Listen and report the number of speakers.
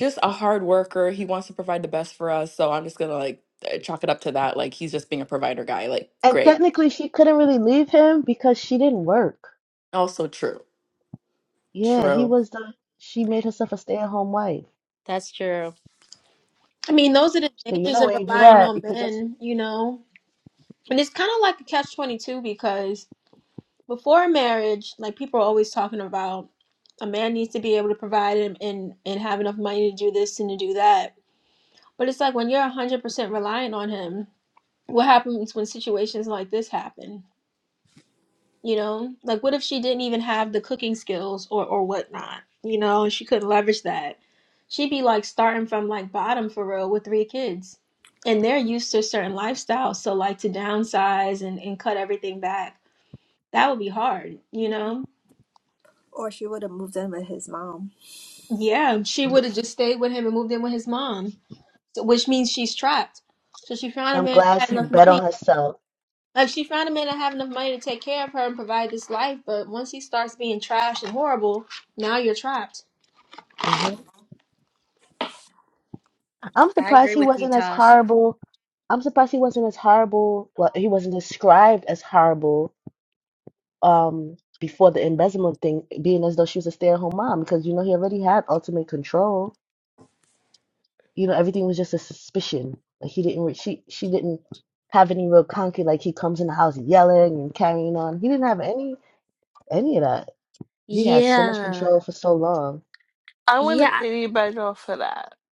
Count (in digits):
6